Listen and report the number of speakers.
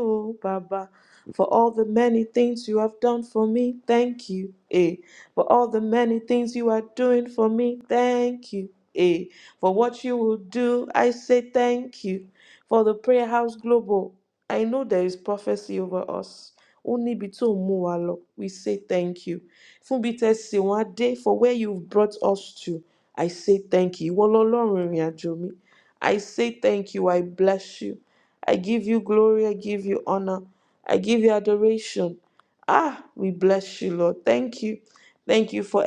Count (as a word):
one